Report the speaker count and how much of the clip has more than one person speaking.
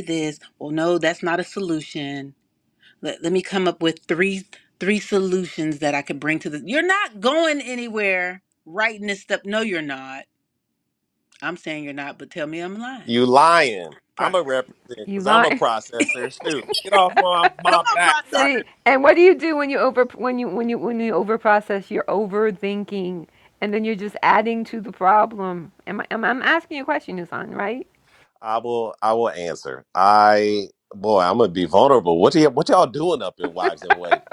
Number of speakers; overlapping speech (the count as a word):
three, about 5%